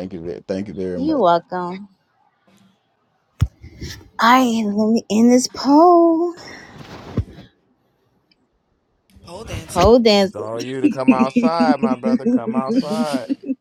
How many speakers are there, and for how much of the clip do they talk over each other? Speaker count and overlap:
3, about 4%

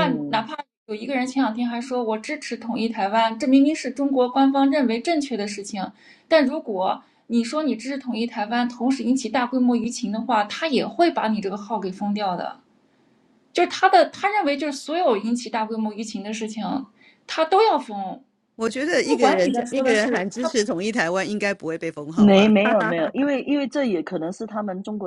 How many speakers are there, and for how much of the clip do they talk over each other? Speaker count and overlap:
3, about 8%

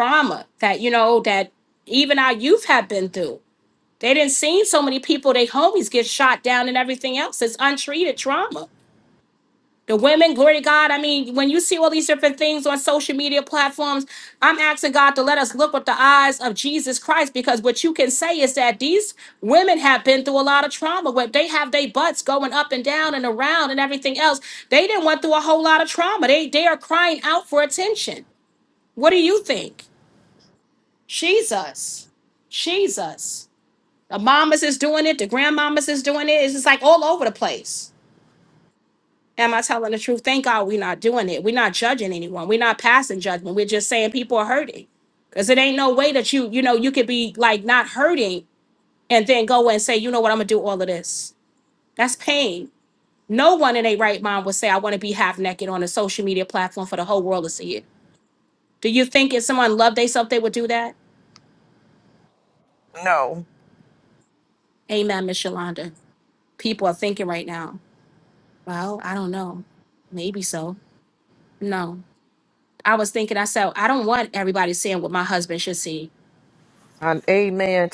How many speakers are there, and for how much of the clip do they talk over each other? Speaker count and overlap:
2, no overlap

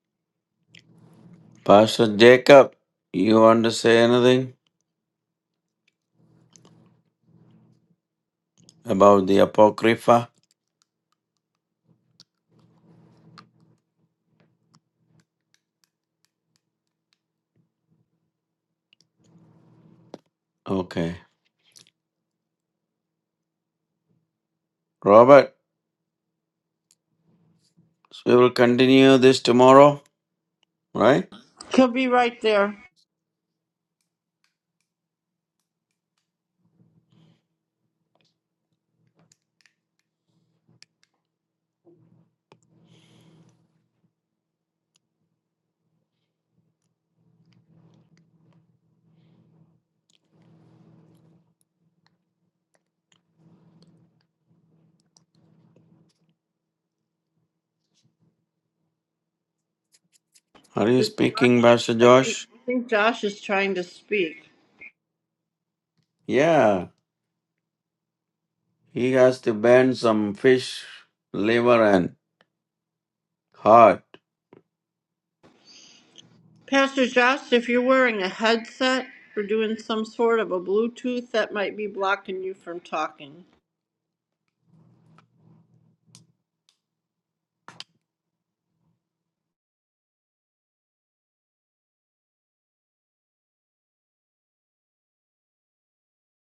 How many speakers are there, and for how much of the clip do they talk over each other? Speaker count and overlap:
2, about 1%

